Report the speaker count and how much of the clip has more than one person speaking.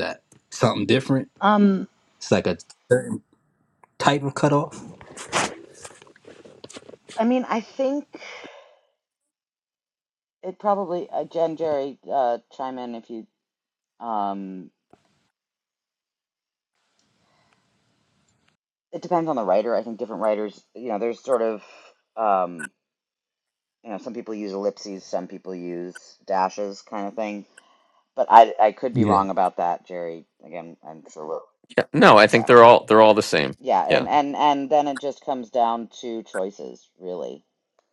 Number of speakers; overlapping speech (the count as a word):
three, about 2%